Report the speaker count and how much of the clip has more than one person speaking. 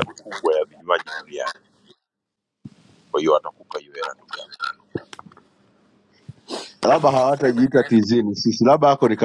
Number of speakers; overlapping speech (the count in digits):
2, no overlap